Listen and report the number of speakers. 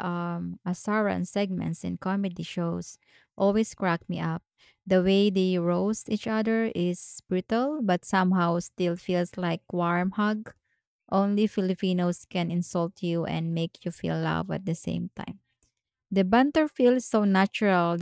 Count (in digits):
1